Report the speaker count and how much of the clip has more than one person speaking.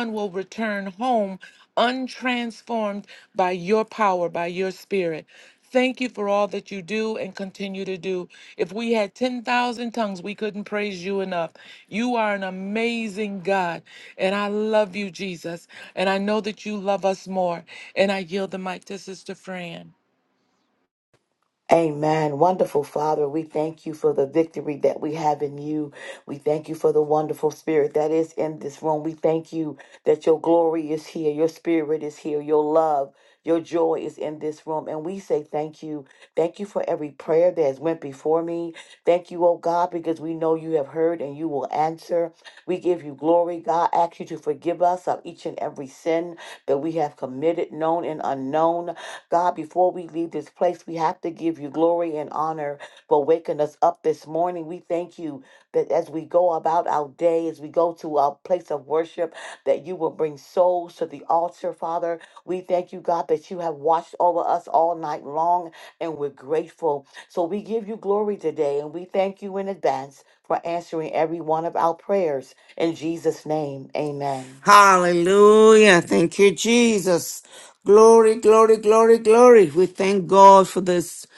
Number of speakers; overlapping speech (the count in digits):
3, no overlap